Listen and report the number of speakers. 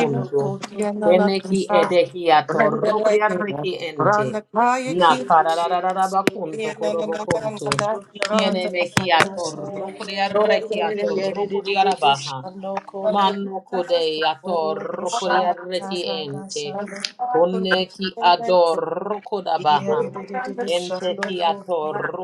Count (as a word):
three